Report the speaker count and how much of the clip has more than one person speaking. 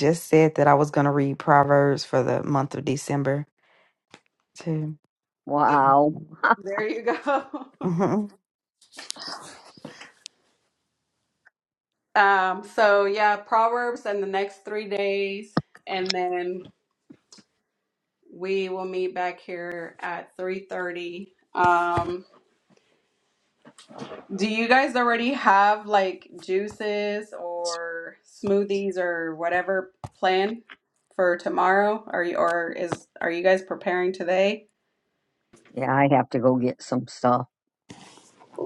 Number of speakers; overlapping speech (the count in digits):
3, no overlap